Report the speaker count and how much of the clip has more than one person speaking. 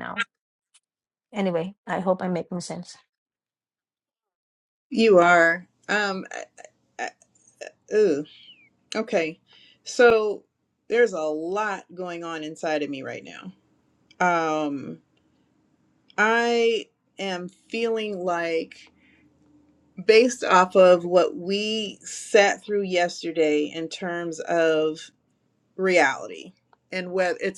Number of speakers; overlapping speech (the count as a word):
two, no overlap